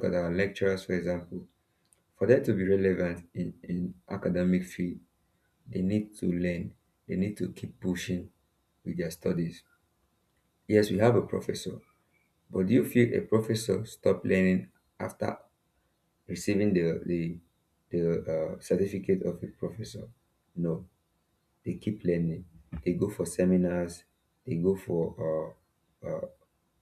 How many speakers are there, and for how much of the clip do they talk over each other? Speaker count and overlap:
one, no overlap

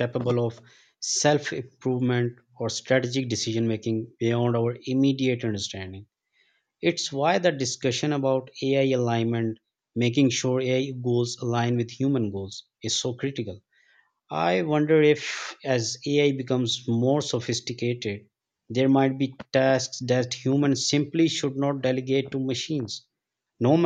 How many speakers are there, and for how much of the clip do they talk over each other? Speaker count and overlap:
one, no overlap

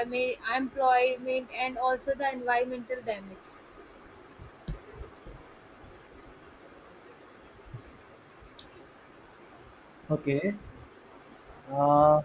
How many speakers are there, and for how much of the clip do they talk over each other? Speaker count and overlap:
two, no overlap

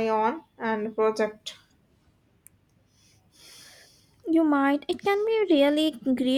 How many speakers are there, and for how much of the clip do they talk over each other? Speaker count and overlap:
two, no overlap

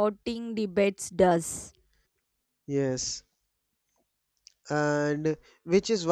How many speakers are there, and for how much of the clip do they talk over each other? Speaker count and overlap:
two, no overlap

